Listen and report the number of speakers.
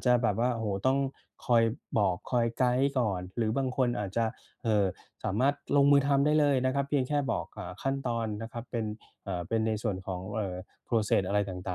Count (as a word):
one